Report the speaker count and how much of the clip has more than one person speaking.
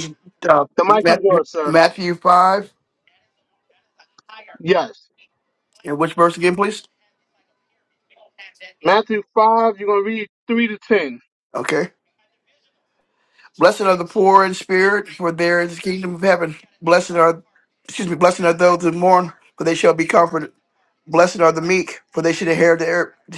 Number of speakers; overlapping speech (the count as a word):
two, about 4%